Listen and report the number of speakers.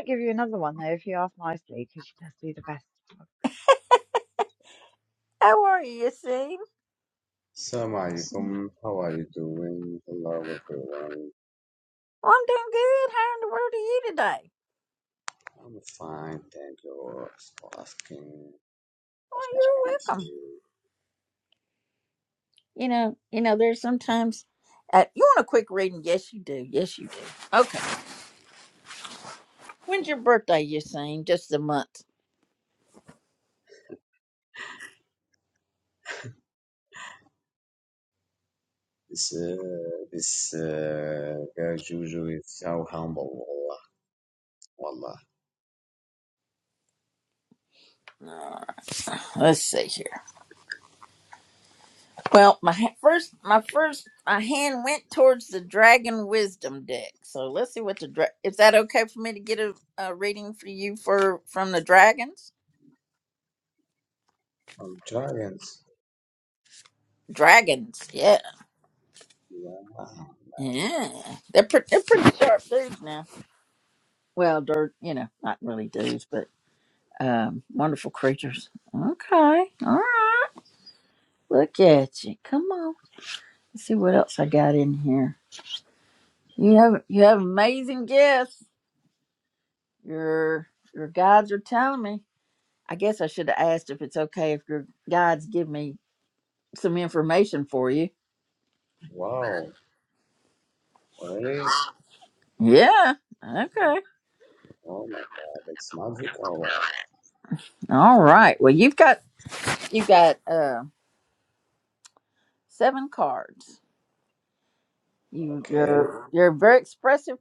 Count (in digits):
3